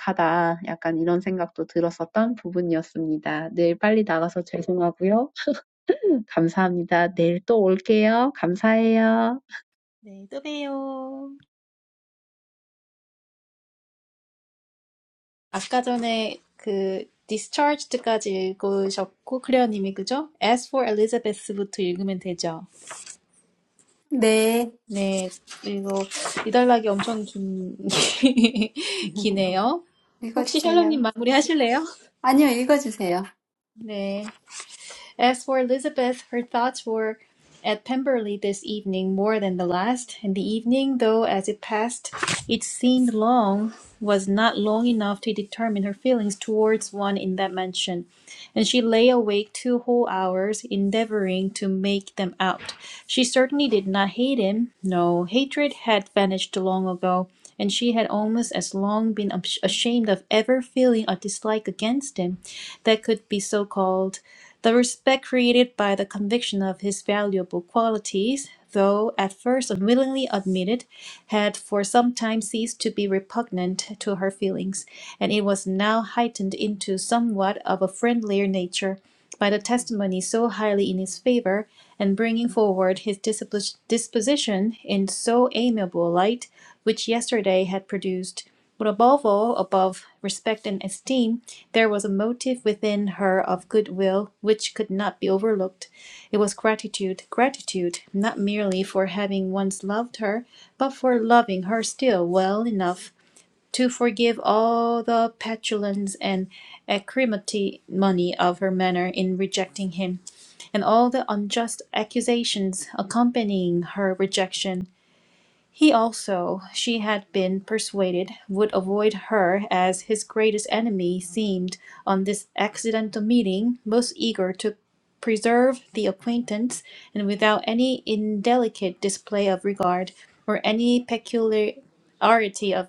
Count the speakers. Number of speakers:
three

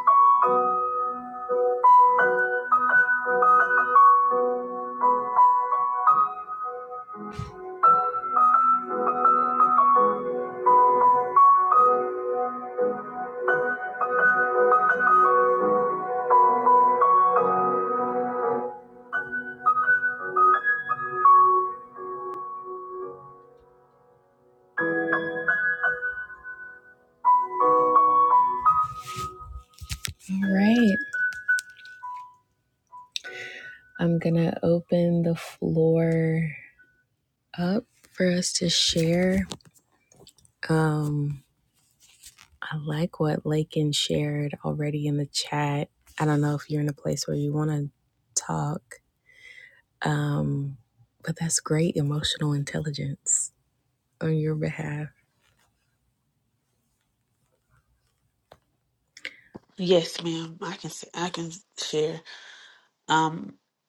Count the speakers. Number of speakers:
two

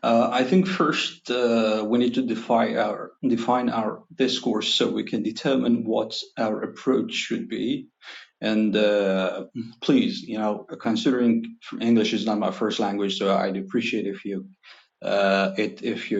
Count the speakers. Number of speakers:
one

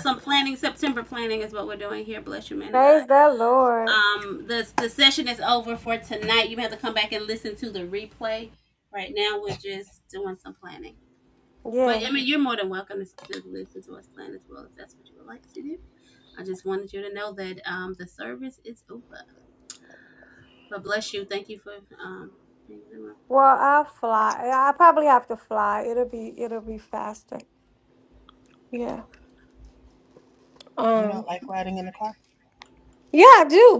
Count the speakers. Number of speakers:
three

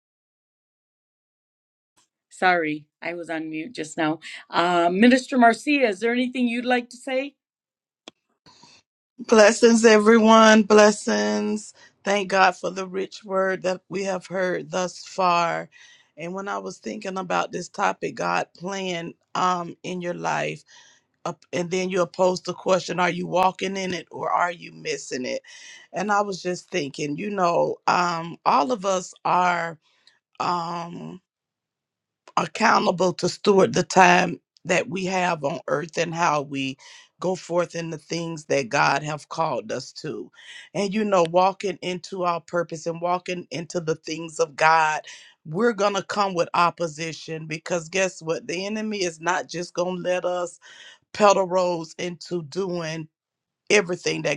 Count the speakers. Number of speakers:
two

